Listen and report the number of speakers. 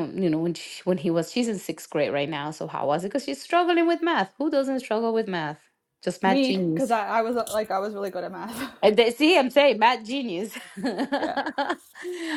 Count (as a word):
two